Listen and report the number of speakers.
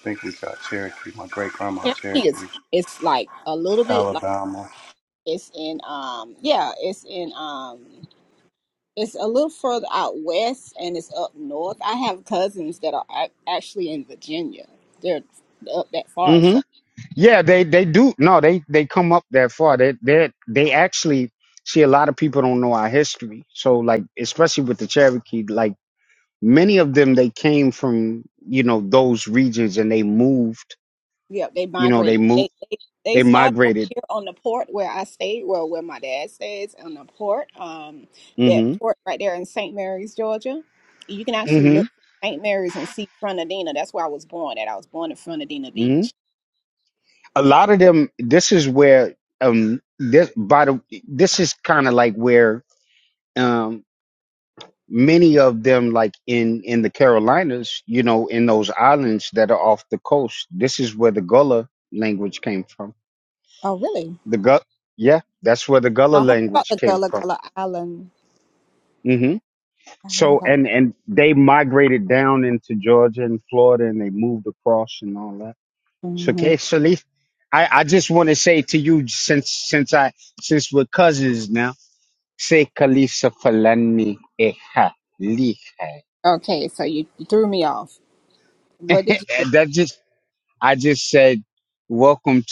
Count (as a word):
three